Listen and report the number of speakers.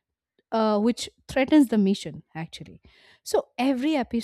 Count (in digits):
1